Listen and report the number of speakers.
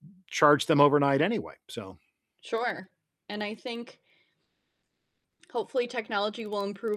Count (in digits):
2